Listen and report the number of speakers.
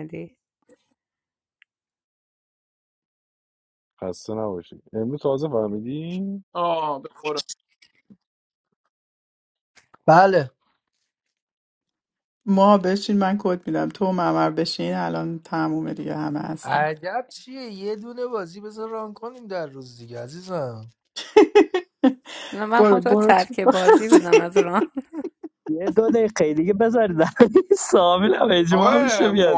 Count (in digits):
6